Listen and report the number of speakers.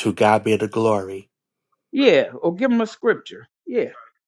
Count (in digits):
2